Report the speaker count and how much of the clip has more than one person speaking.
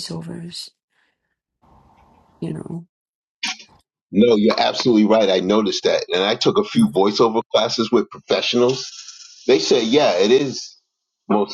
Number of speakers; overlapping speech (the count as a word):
two, no overlap